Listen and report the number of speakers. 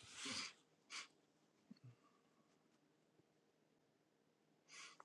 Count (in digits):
0